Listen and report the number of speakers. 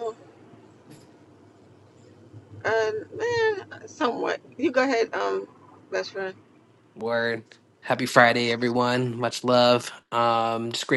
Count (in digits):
2